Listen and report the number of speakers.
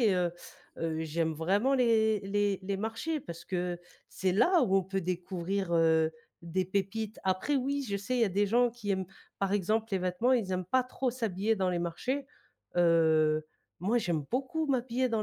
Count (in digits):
1